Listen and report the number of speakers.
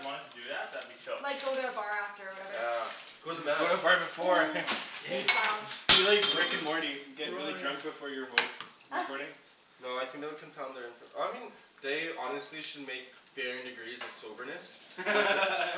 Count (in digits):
4